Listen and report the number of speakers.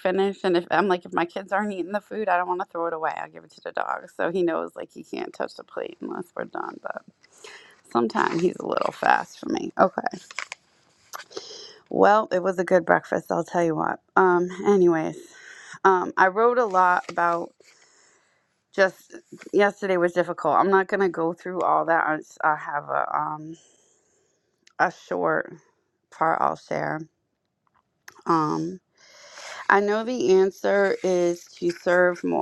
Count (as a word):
one